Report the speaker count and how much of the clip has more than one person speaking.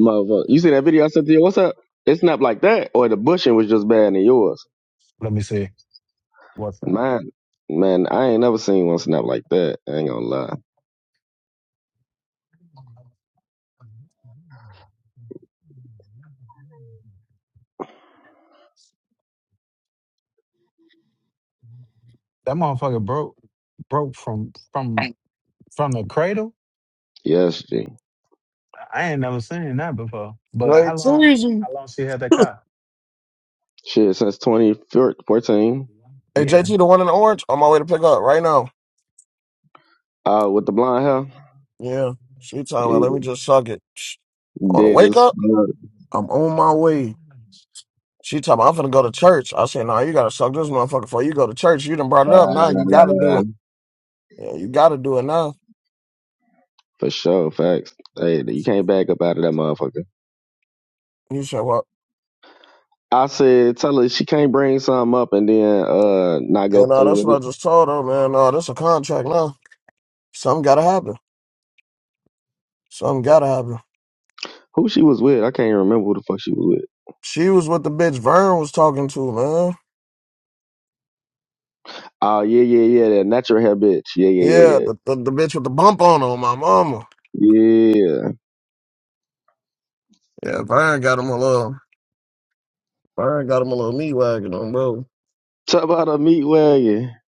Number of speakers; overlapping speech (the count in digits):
3, about 4%